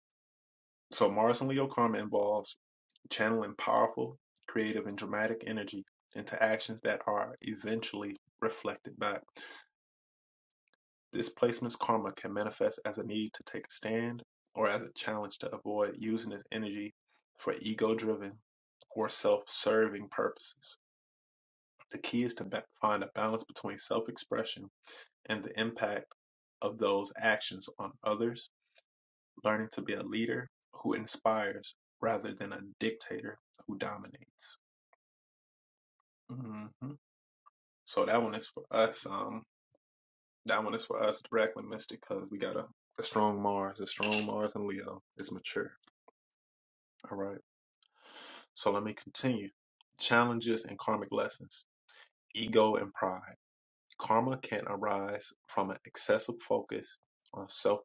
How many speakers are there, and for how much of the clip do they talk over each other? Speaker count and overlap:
1, no overlap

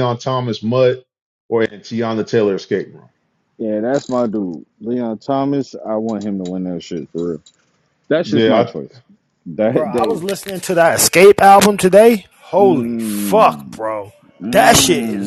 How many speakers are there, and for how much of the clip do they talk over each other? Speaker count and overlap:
3, about 19%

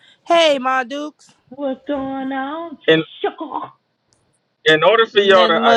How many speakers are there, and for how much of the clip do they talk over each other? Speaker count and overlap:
3, about 11%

